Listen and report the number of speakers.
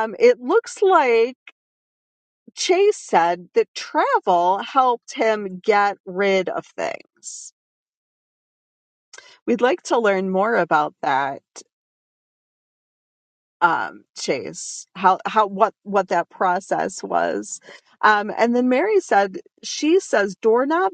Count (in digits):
1